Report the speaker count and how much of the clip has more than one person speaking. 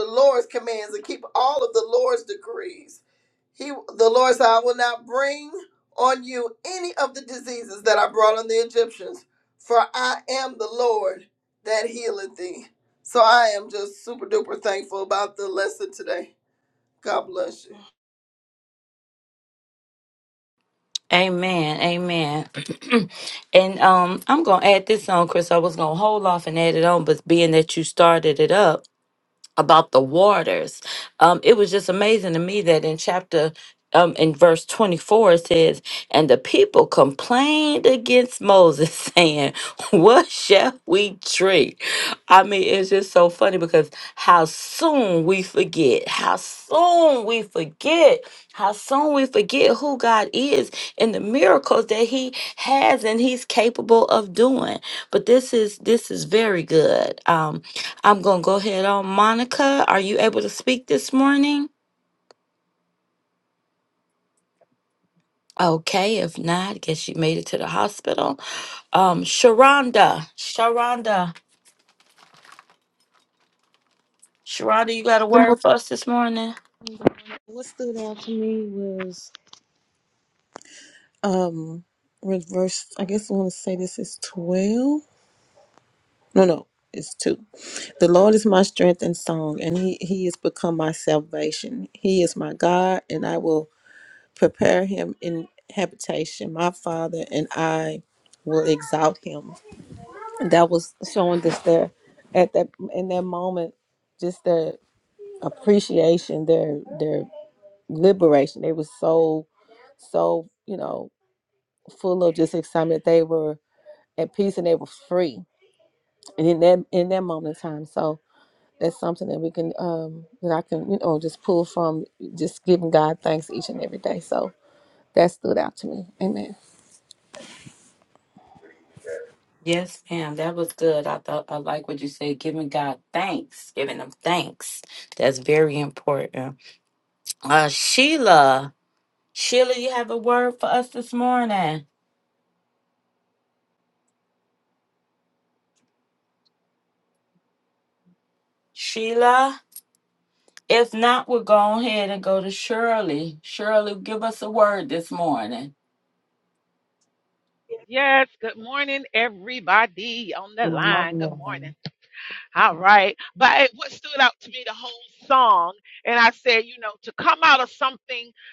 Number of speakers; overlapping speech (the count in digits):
4, about 1%